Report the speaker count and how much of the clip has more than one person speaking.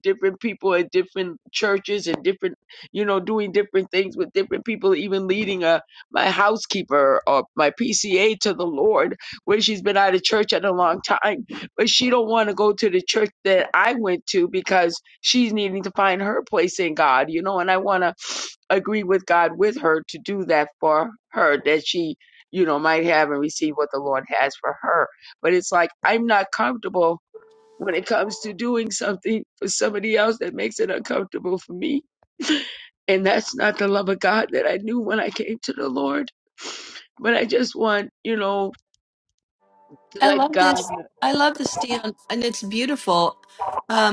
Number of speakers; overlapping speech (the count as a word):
two, about 1%